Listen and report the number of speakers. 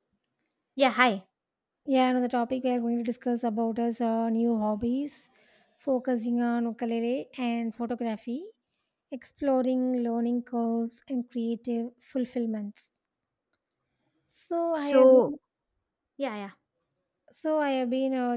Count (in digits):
2